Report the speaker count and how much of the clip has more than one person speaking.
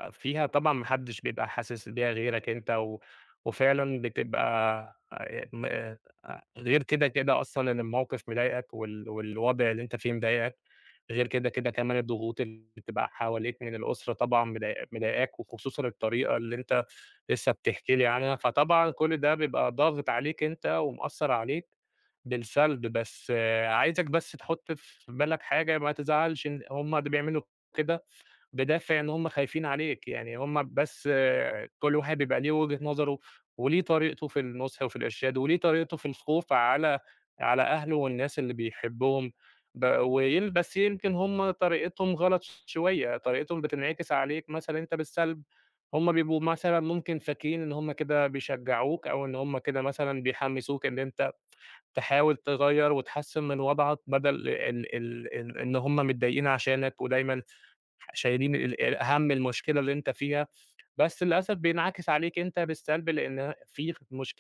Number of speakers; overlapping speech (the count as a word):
one, no overlap